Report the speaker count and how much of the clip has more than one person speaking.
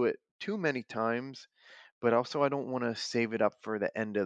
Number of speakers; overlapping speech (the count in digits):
1, no overlap